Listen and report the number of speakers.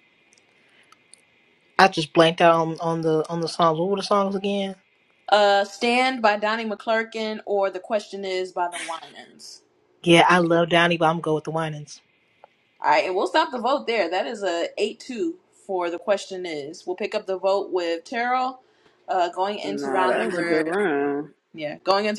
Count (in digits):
3